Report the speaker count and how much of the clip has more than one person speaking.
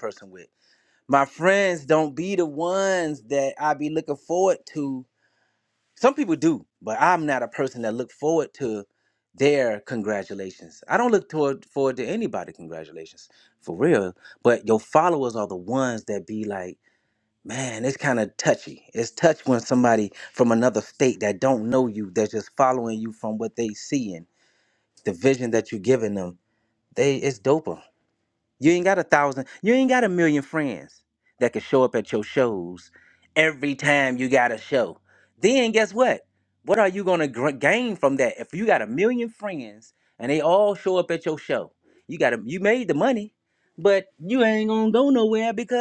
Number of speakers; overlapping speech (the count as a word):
one, no overlap